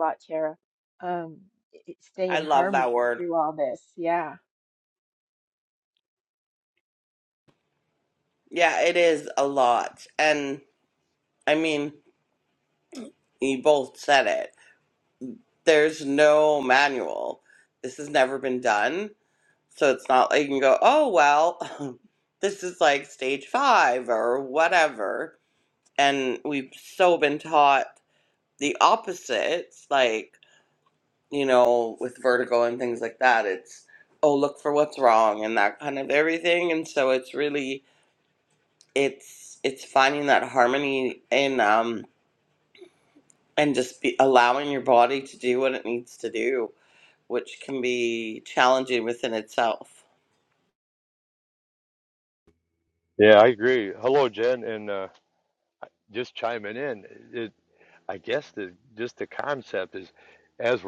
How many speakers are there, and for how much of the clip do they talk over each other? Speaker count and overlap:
3, about 2%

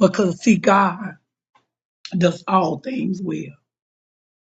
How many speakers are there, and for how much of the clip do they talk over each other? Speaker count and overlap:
1, no overlap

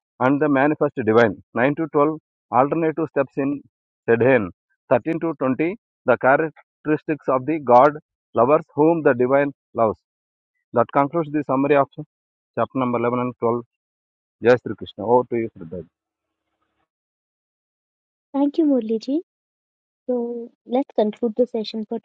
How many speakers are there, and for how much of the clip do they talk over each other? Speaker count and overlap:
2, no overlap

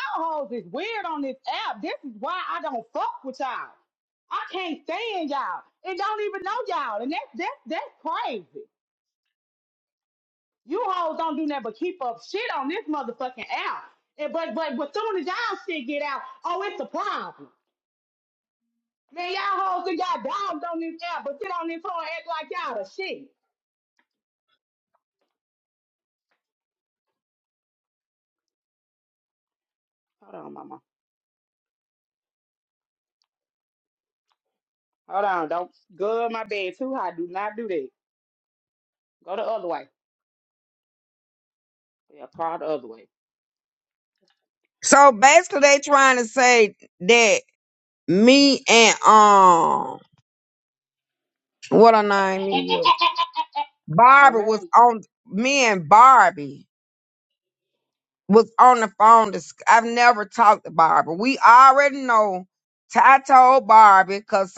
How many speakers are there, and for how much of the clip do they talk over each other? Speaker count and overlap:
2, about 1%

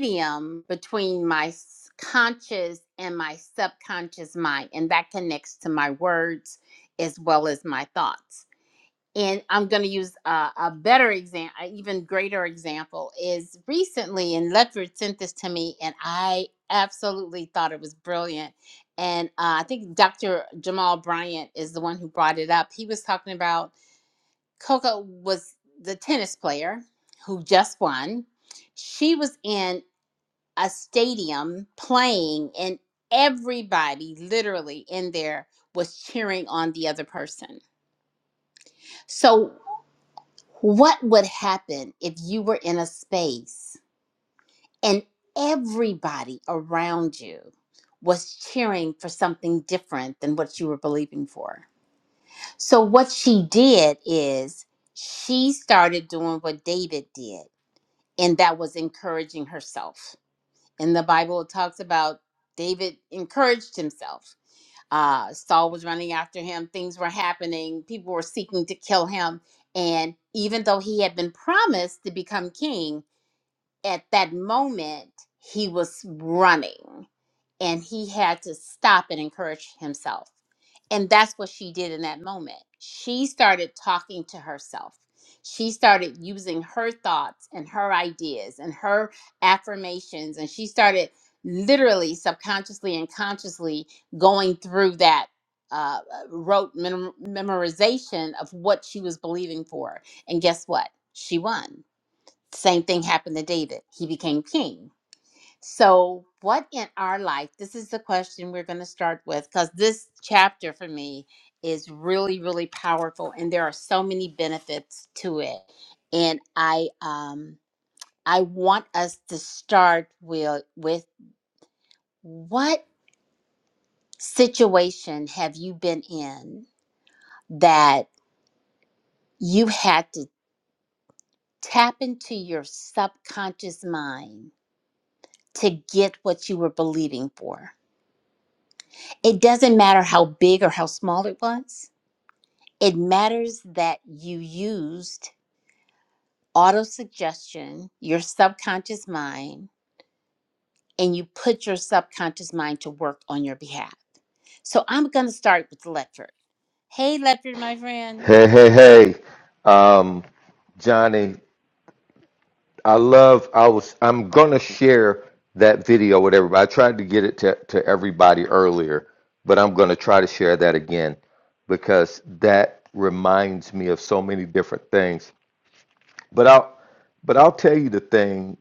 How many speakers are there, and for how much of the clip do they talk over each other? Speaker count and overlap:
2, under 1%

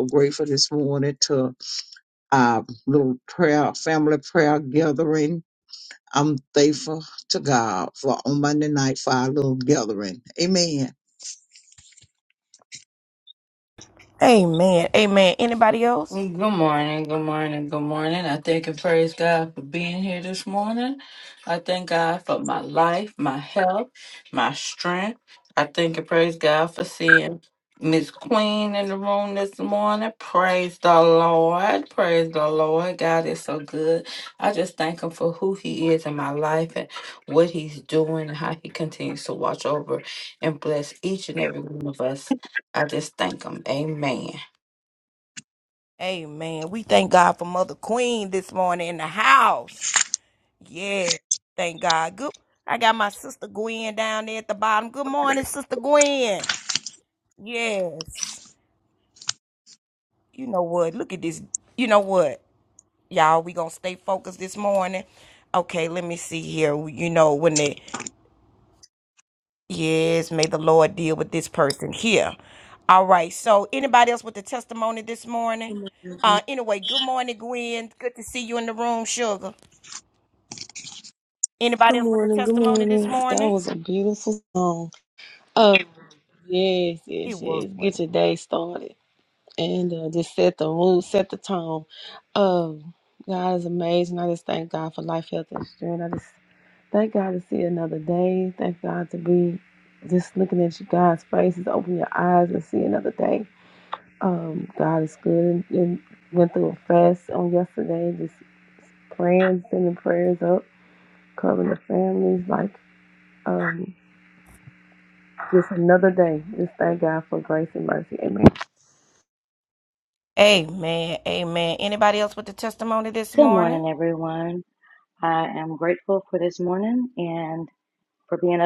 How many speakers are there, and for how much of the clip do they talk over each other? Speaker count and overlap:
5, about 2%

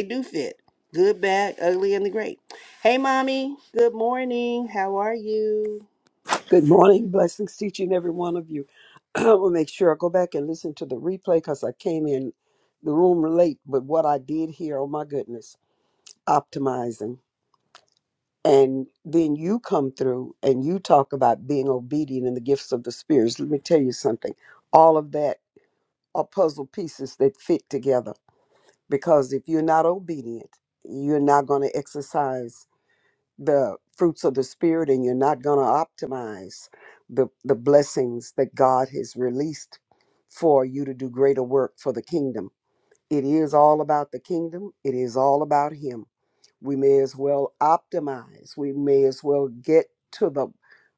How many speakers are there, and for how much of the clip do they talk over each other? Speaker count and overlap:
2, no overlap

